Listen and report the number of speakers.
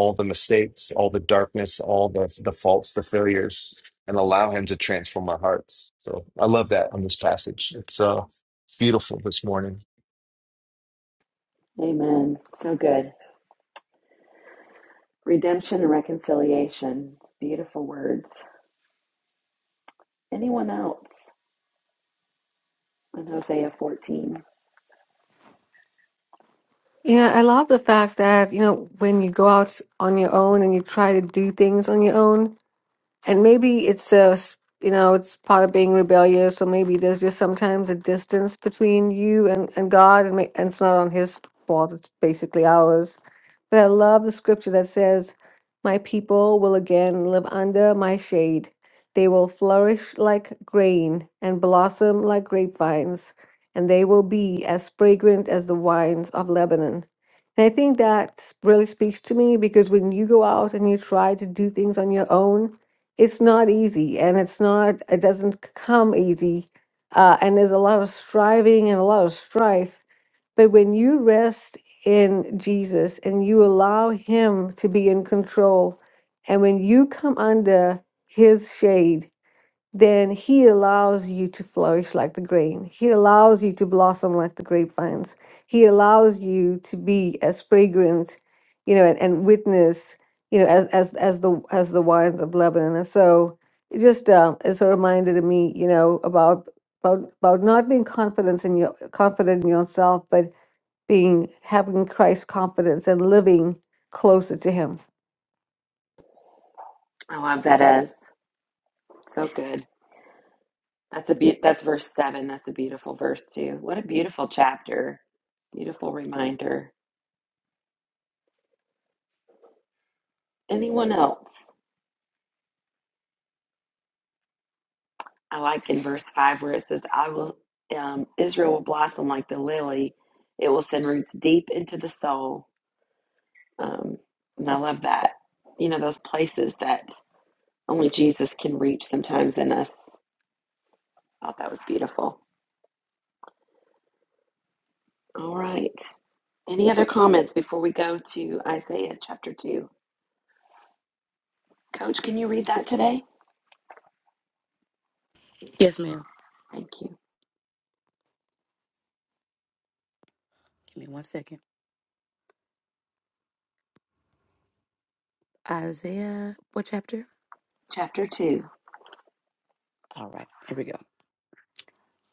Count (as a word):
four